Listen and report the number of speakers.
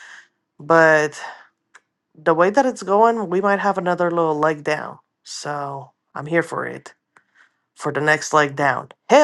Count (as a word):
one